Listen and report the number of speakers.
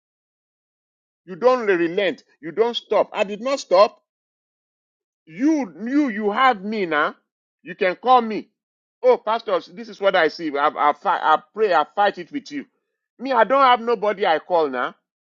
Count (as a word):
one